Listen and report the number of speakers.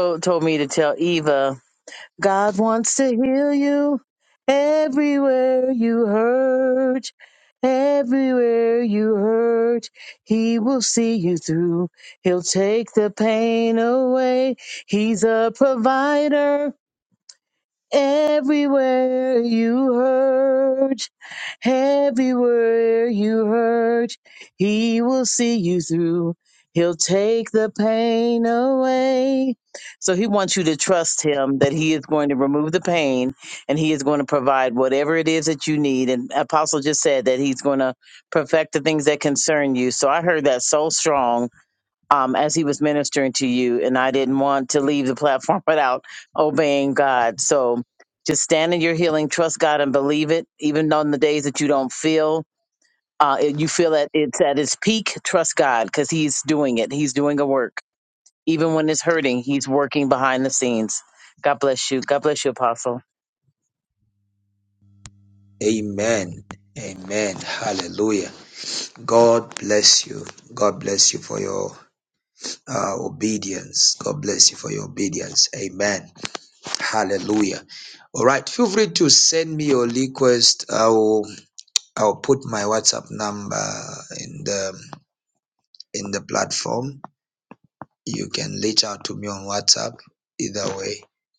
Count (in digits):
2